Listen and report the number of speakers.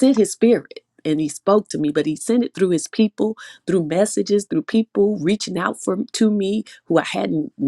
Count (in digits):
1